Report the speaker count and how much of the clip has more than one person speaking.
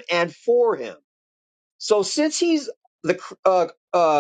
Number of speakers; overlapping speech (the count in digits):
1, no overlap